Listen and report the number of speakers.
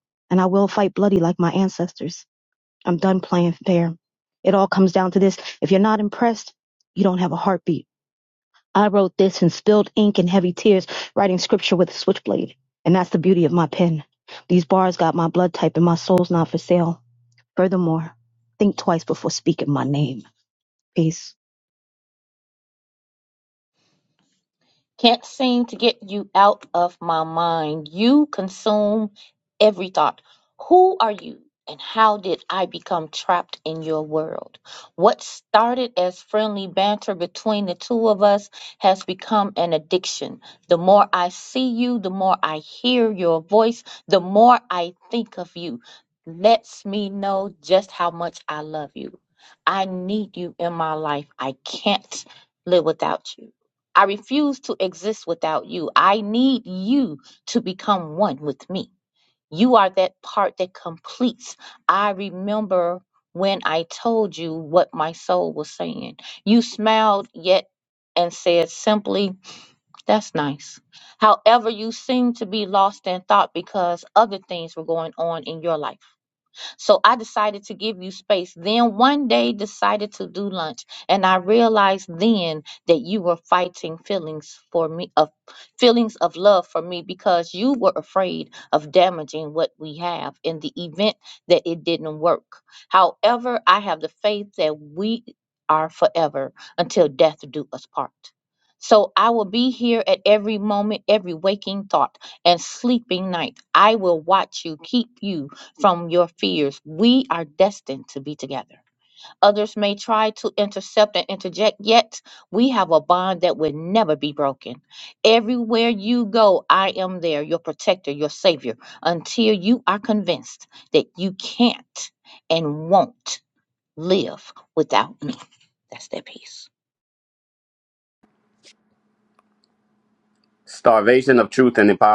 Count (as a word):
three